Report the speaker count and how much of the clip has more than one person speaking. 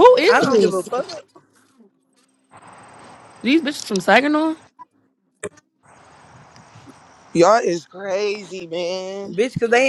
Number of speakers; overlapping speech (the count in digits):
3, about 7%